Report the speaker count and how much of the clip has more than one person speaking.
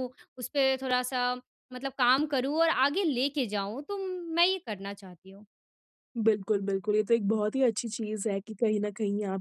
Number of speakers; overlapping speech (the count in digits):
2, no overlap